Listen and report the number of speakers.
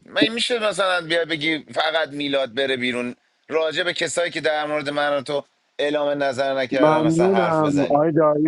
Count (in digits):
2